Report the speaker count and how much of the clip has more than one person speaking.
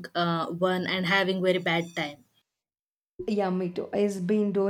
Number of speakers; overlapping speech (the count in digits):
2, no overlap